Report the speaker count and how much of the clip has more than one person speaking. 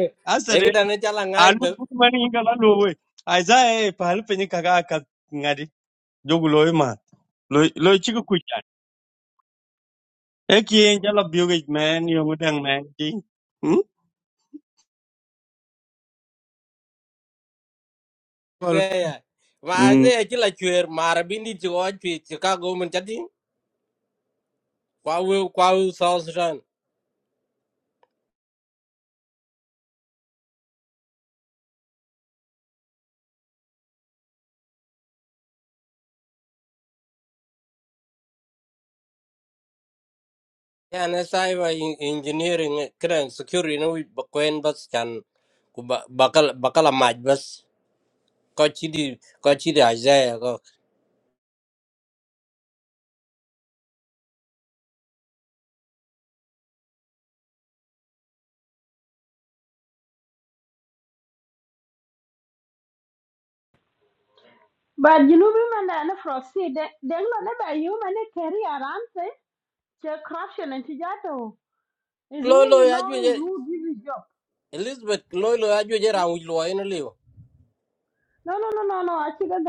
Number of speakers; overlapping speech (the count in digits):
3, about 2%